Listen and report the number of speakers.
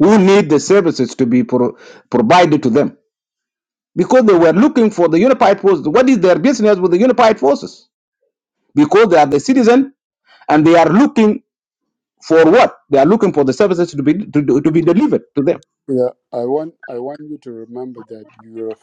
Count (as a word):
two